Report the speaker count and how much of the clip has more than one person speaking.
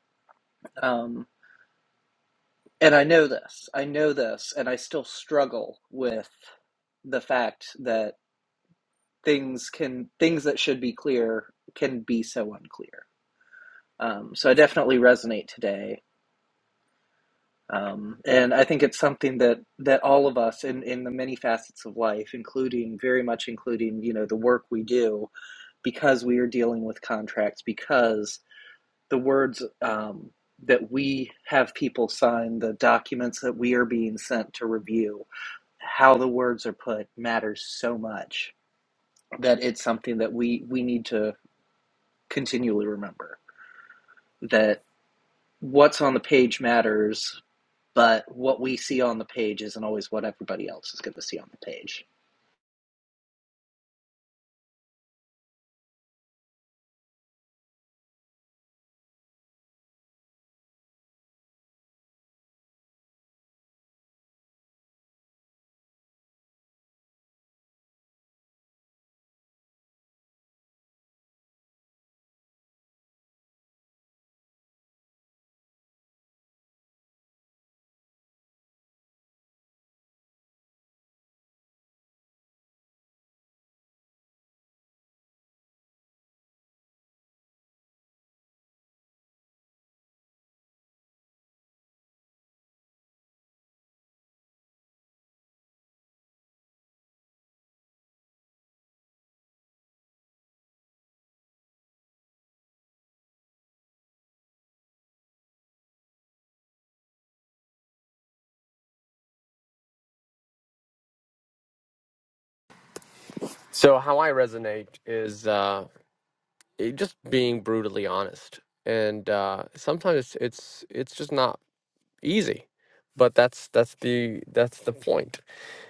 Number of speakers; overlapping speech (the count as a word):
two, no overlap